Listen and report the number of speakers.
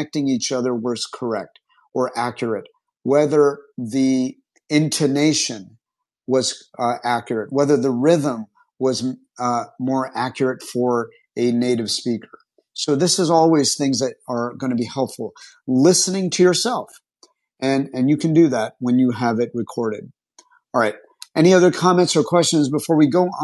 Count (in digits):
1